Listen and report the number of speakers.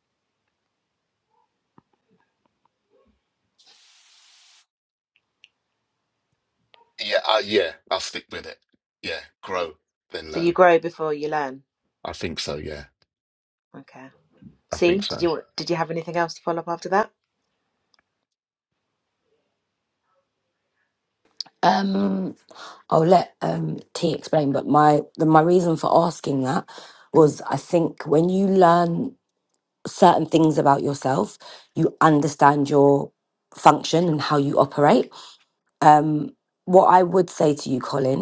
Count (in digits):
3